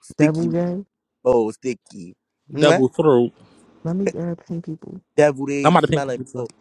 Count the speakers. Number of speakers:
three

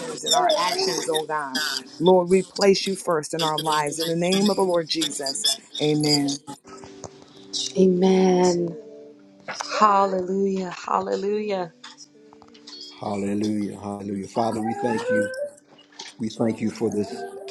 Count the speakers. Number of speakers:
three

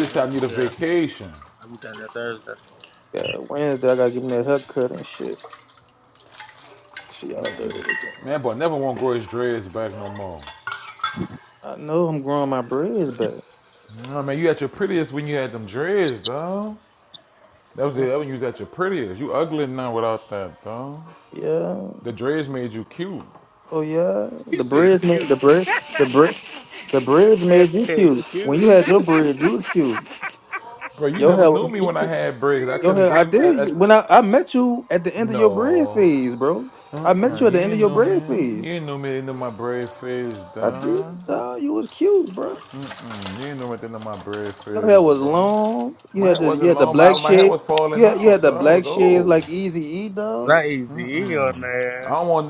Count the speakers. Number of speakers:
three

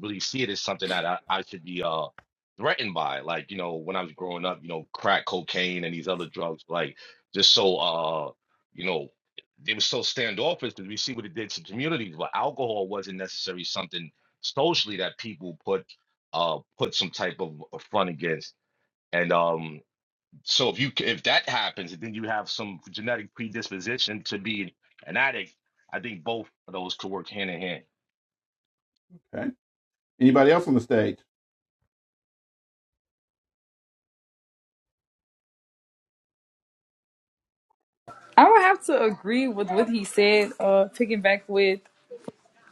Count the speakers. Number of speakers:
three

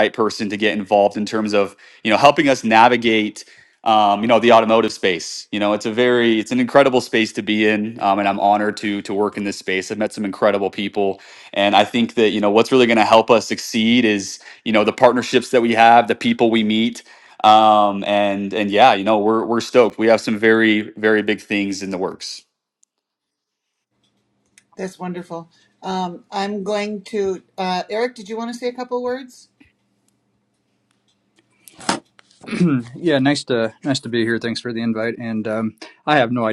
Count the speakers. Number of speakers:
three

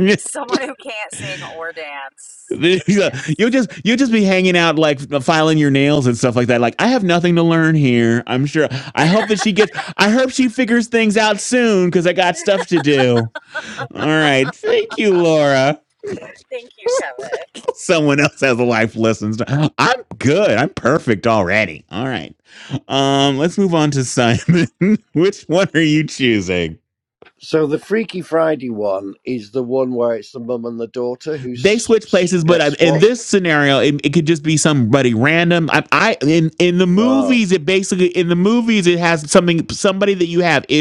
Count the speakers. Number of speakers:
three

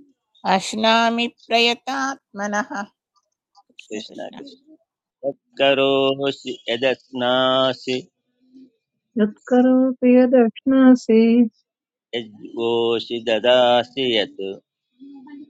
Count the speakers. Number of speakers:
three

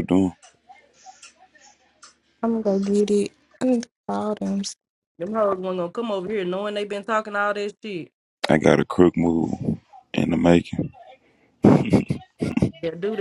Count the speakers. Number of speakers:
three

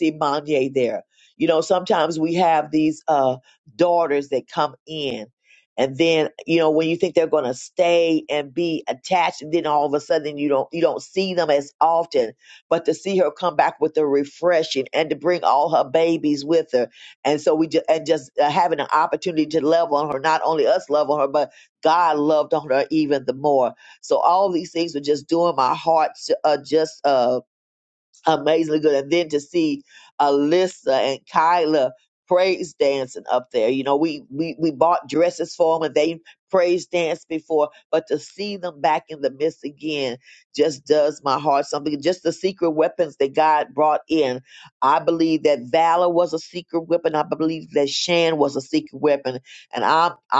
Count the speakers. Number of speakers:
one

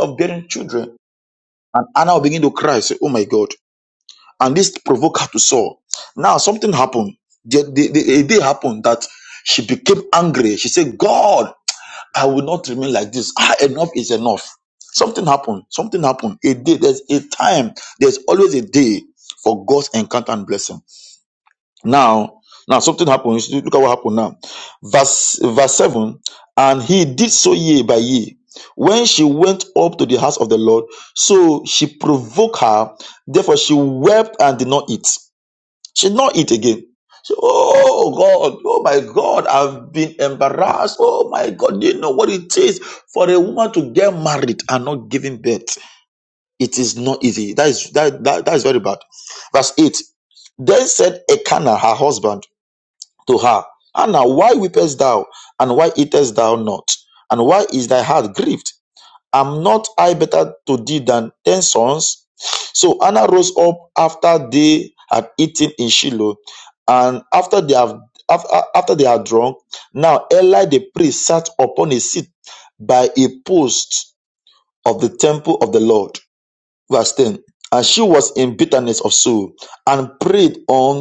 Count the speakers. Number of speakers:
one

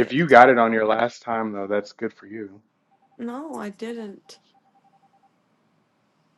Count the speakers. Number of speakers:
two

